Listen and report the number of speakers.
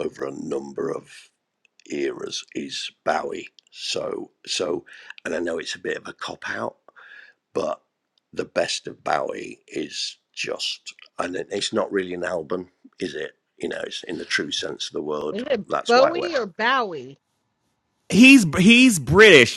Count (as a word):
three